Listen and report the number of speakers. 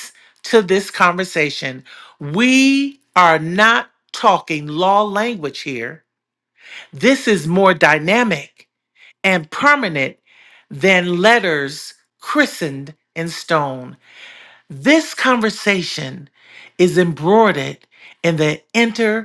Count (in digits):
1